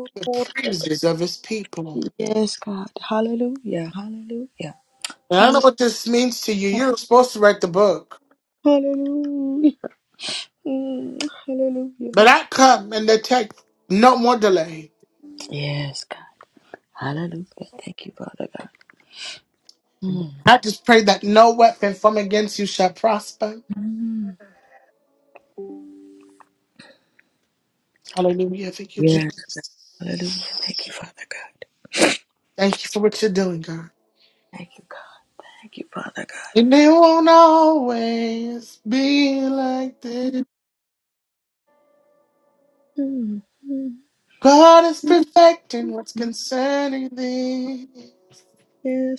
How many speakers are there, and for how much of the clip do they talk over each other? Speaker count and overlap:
two, about 2%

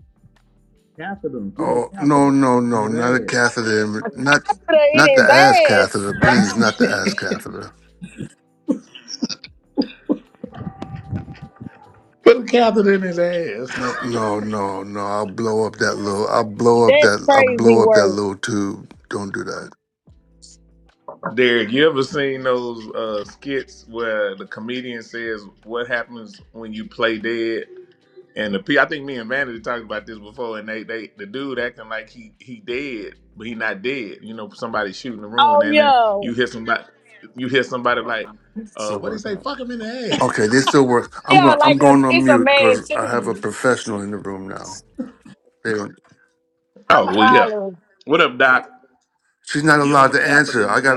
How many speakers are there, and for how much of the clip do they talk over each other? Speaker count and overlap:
three, about 19%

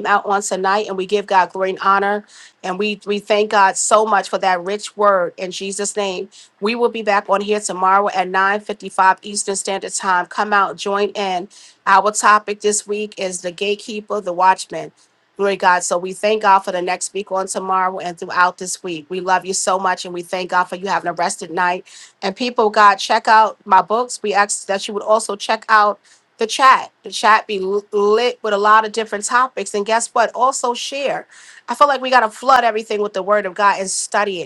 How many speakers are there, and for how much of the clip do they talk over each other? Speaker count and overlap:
one, no overlap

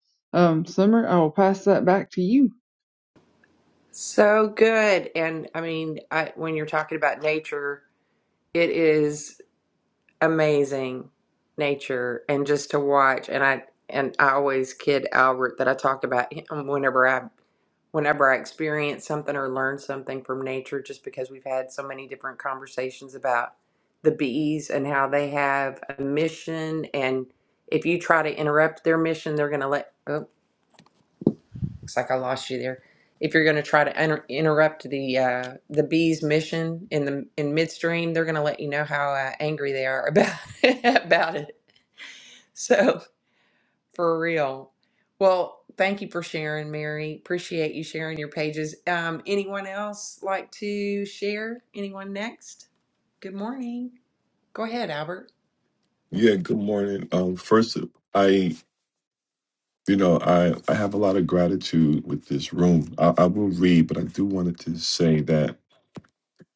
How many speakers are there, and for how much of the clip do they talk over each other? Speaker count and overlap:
three, no overlap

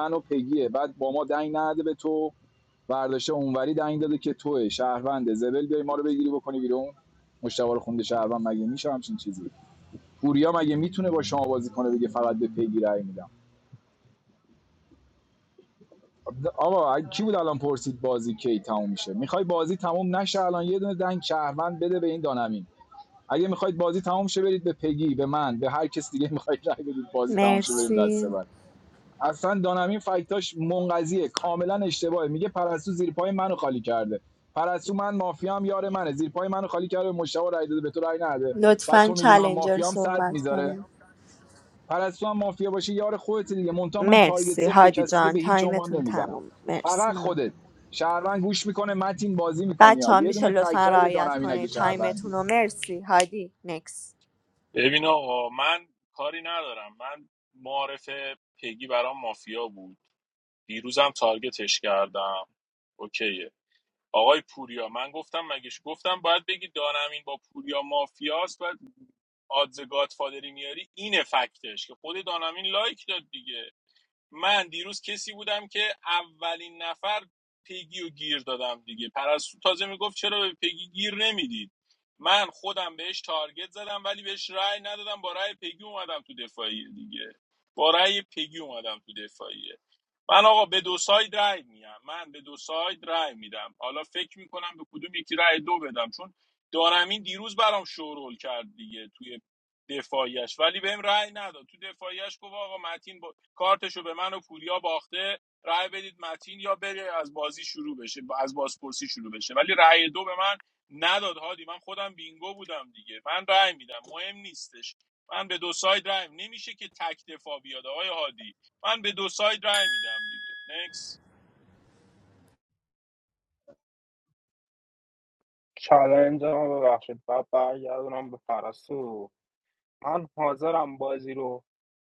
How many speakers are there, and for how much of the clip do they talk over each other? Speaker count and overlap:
four, about 6%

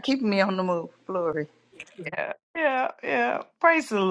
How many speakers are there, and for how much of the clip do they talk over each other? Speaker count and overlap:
two, about 2%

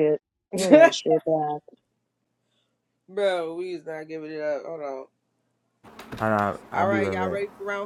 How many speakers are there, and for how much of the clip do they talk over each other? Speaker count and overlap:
three, about 10%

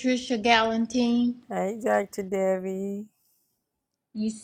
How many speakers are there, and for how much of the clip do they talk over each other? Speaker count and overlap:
two, no overlap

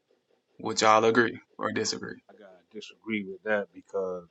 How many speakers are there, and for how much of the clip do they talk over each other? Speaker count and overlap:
two, no overlap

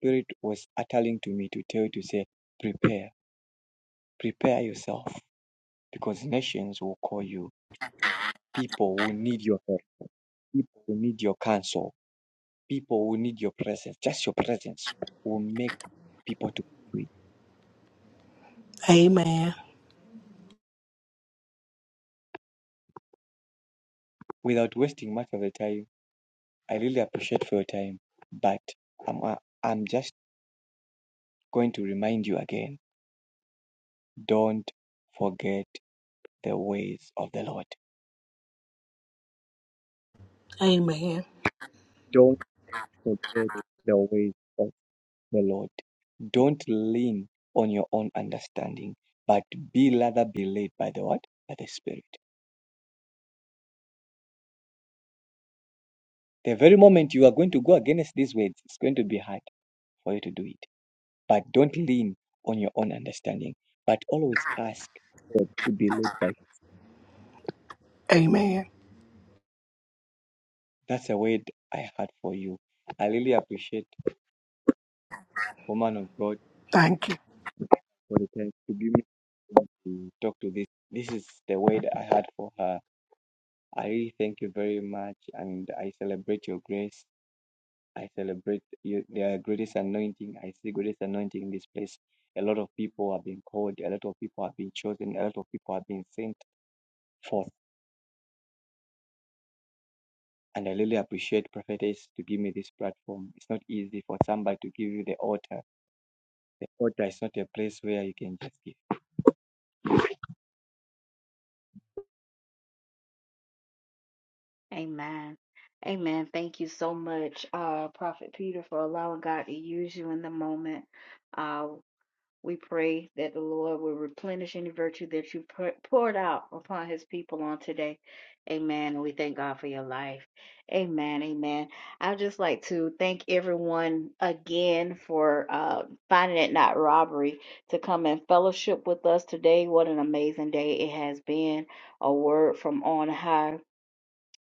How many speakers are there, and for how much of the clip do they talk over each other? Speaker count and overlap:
three, no overlap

